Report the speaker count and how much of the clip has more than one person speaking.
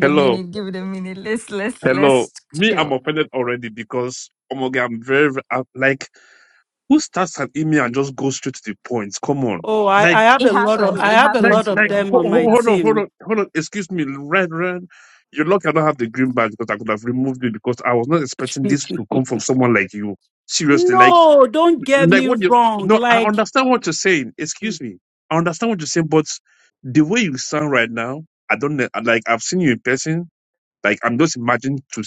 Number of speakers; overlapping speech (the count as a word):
three, about 18%